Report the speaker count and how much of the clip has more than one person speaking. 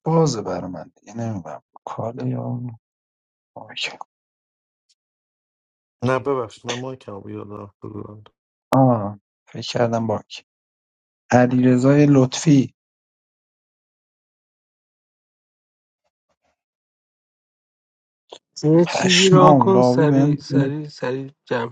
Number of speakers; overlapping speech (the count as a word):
three, about 7%